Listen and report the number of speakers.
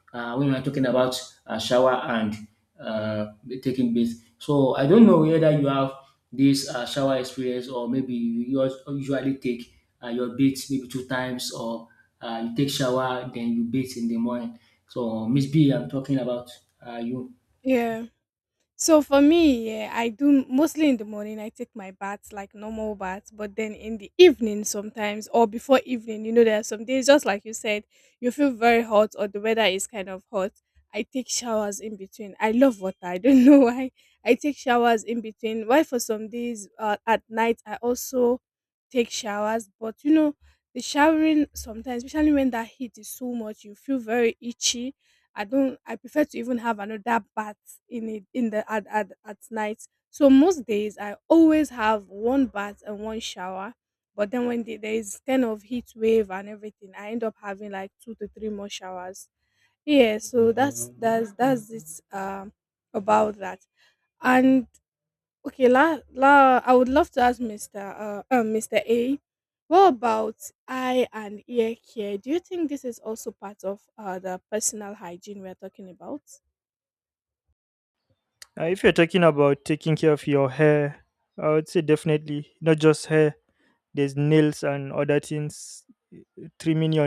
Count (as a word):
three